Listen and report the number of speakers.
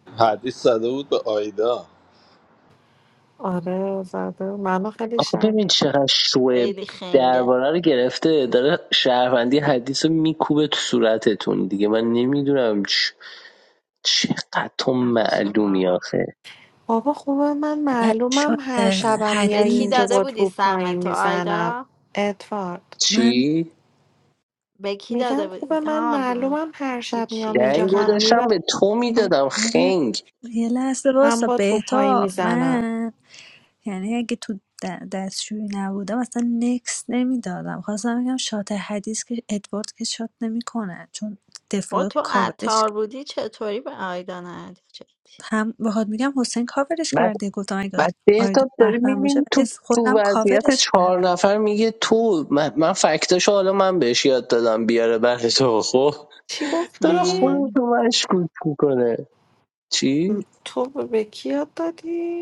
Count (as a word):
five